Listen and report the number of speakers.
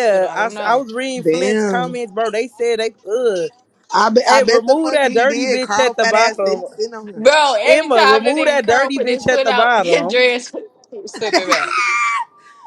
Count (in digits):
3